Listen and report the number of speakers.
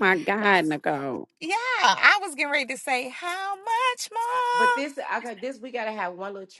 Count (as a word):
three